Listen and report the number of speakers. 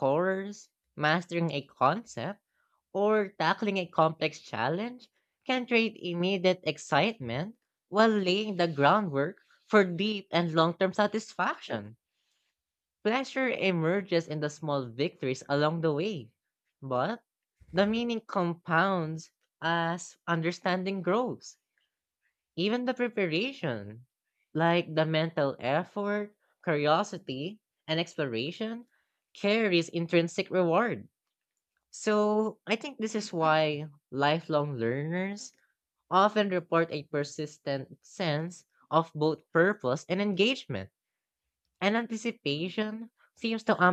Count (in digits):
1